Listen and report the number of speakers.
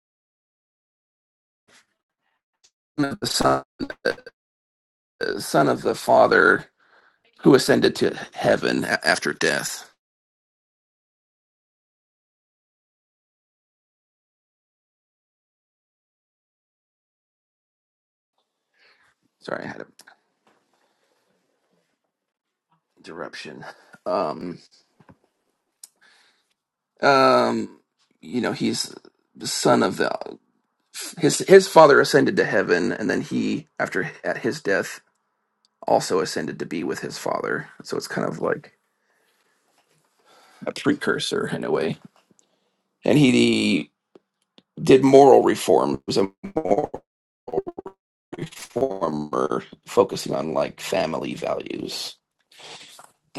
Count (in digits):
1